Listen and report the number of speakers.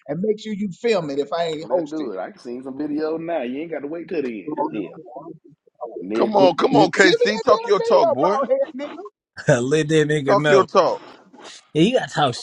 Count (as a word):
four